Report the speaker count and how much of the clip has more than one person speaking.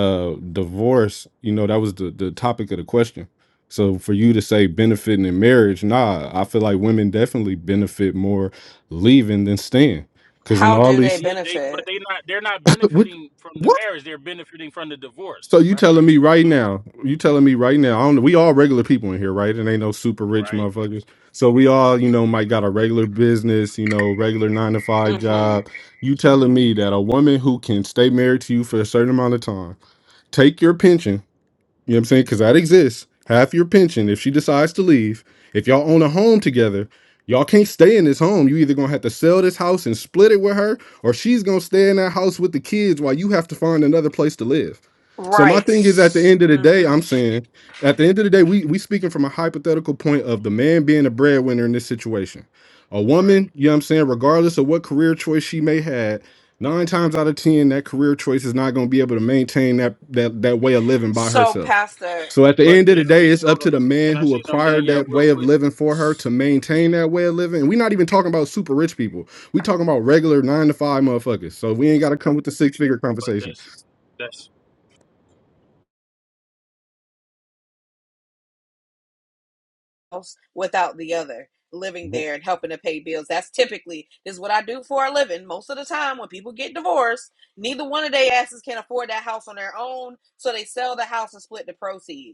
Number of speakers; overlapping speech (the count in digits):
3, about 9%